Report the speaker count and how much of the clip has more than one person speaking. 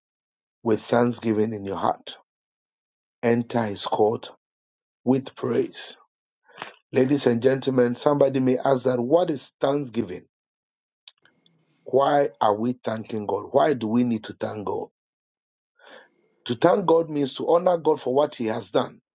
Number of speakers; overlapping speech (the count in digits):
1, no overlap